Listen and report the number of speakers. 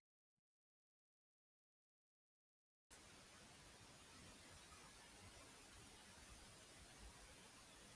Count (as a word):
zero